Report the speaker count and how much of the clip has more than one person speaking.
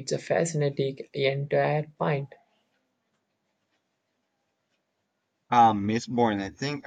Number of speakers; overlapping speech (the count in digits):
2, no overlap